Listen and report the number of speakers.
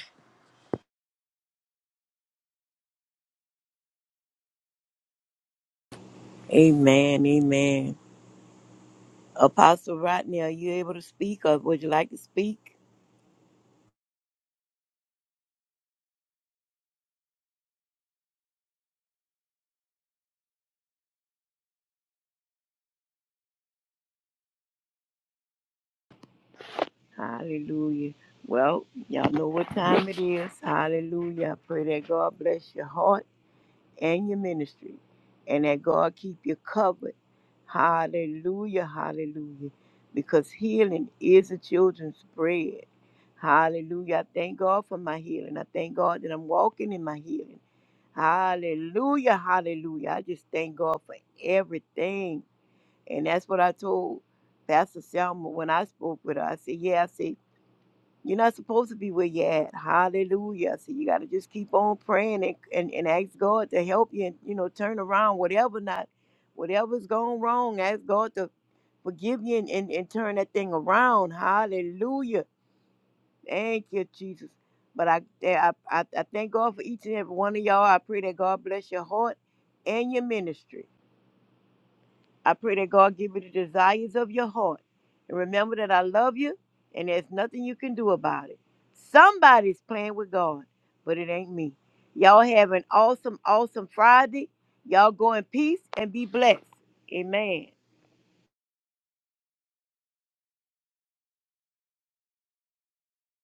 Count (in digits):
1